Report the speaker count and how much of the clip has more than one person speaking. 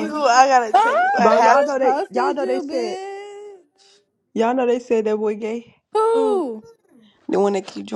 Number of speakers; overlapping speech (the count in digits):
3, about 33%